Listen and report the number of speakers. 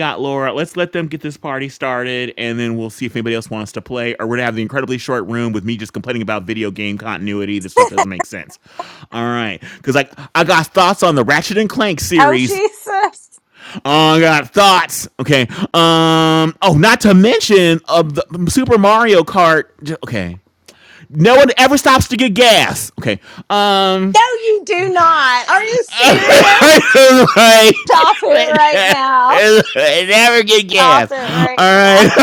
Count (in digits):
2